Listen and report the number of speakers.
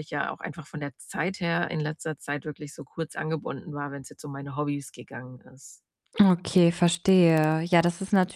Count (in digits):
2